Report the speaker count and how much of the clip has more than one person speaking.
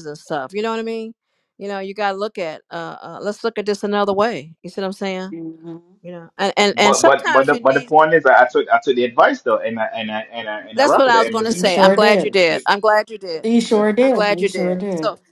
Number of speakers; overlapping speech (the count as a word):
three, about 27%